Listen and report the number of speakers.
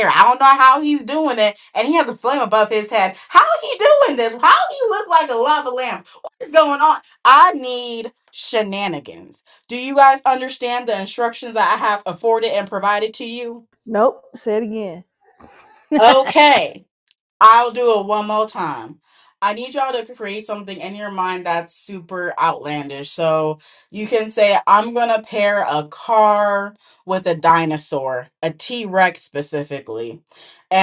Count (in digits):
2